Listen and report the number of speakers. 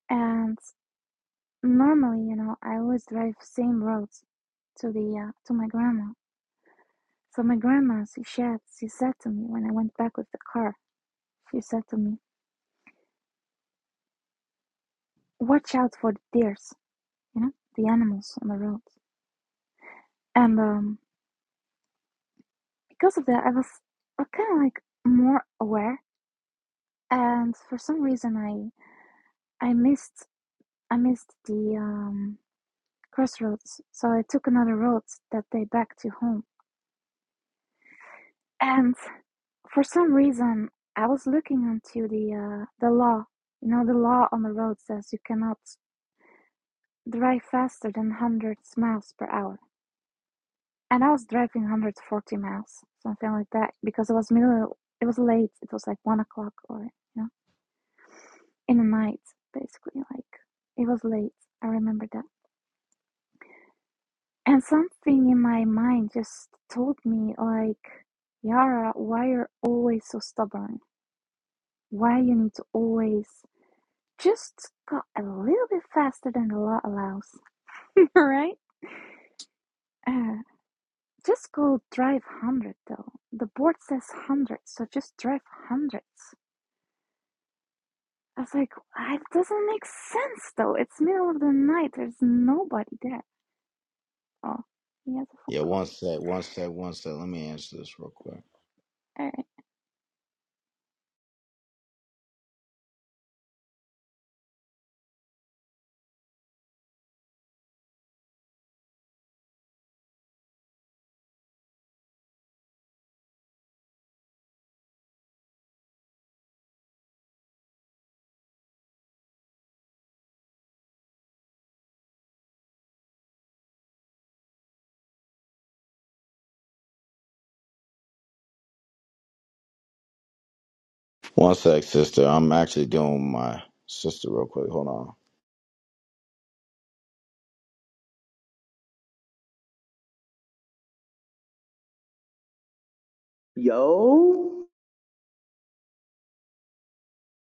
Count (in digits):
3